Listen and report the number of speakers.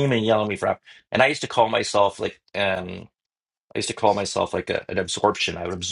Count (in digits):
1